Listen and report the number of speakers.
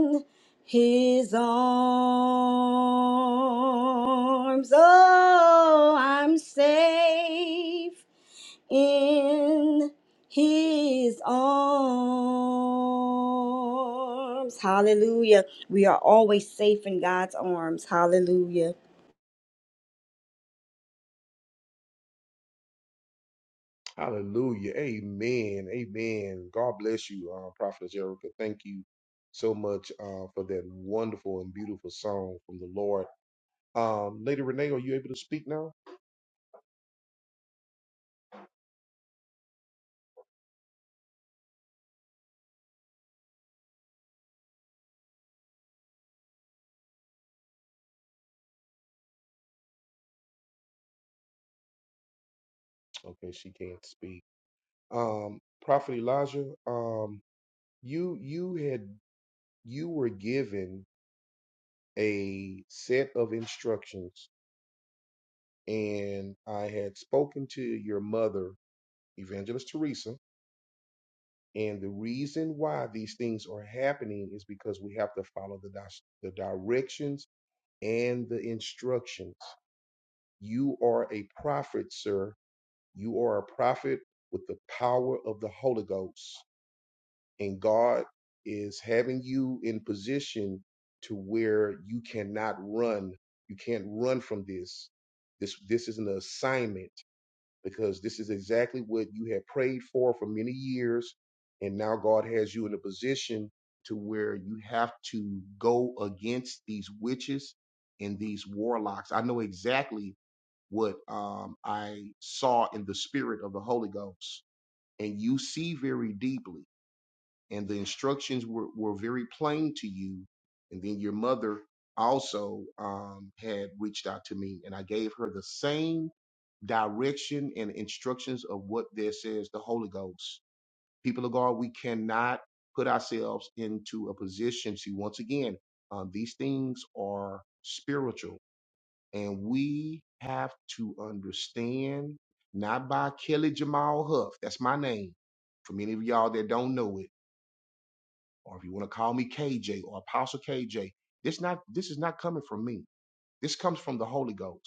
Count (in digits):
2